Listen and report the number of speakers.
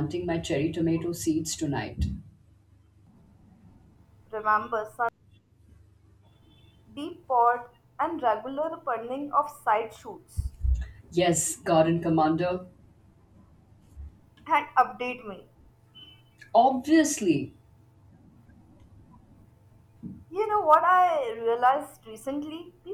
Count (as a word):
two